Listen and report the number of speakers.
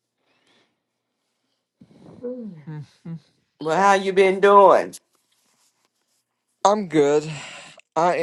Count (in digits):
2